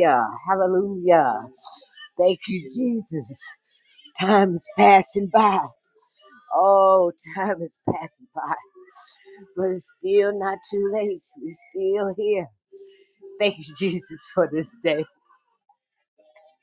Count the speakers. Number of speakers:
1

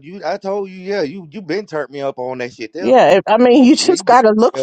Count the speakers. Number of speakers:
2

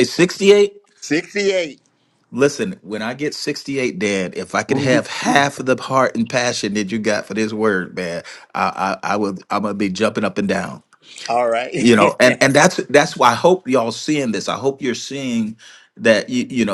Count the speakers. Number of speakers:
2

